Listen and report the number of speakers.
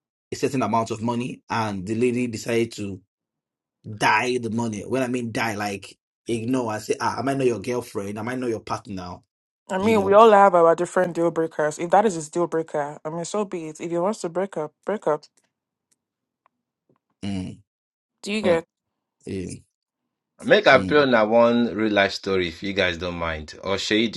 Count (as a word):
three